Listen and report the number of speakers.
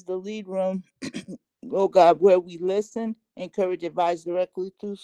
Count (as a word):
one